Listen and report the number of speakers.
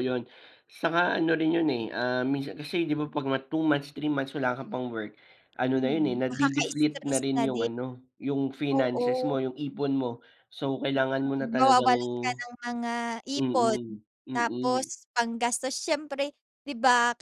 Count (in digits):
2